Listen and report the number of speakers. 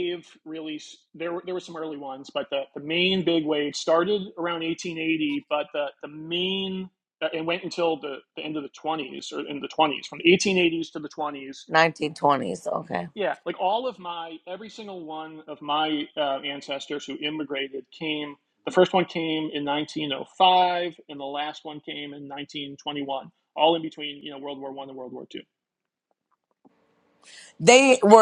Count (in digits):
2